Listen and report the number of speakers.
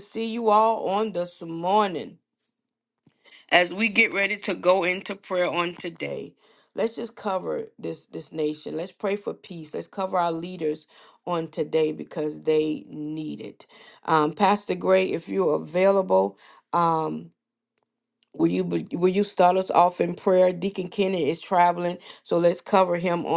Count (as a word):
one